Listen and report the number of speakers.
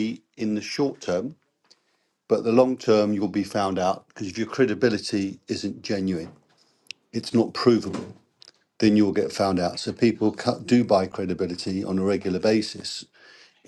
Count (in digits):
1